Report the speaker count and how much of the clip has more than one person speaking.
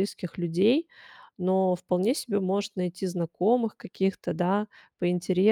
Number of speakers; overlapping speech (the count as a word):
one, no overlap